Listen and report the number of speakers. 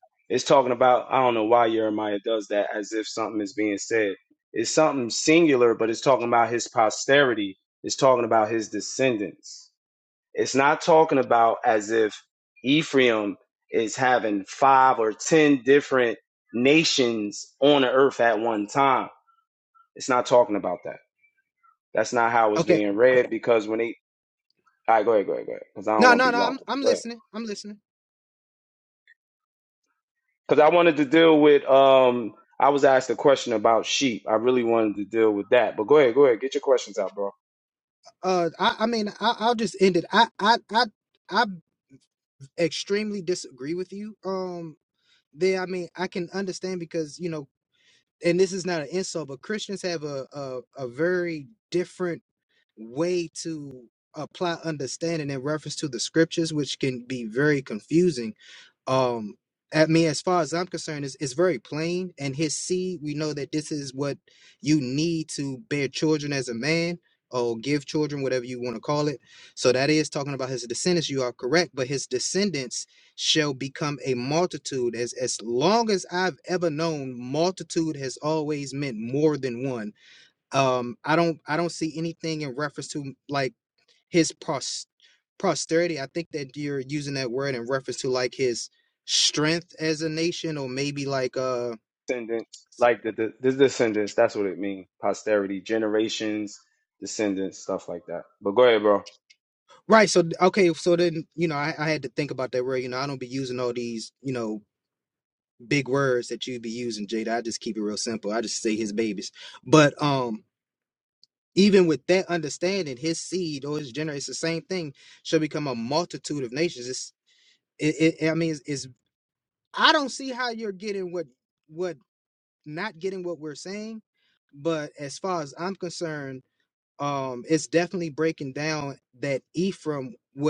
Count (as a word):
two